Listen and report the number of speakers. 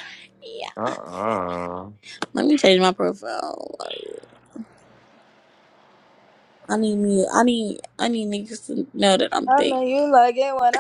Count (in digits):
3